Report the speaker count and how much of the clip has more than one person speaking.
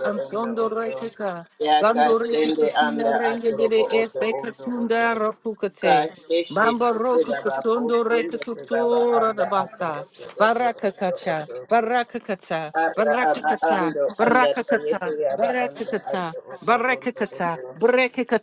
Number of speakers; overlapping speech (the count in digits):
2, about 77%